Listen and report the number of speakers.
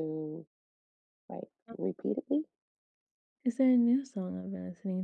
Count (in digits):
2